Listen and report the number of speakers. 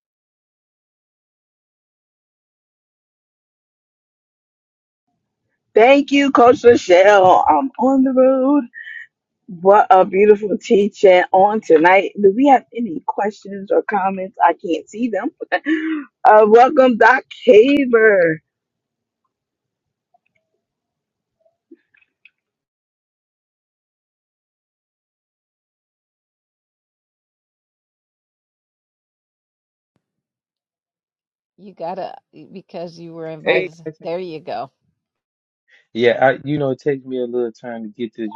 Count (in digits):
3